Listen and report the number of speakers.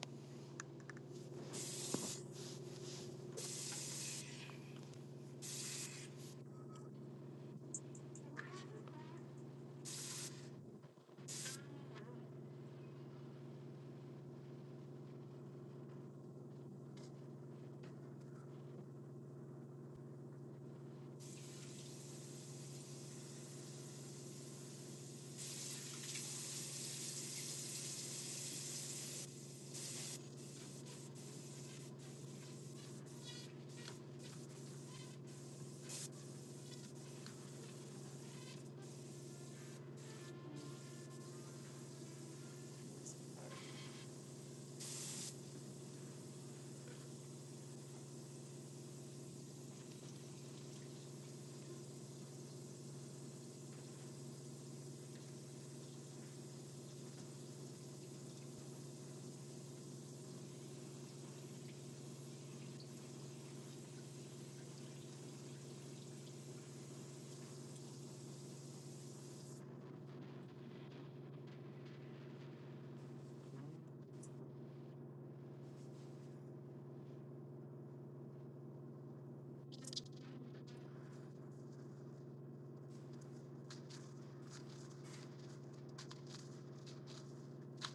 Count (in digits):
0